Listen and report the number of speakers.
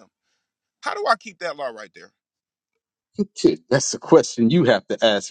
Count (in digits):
2